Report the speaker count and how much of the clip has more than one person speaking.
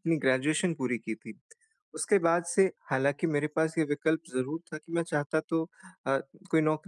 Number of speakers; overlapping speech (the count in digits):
1, no overlap